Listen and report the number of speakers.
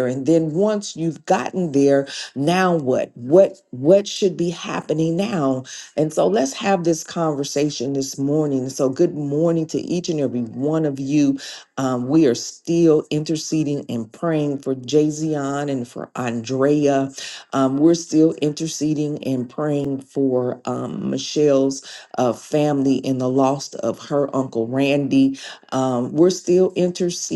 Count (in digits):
1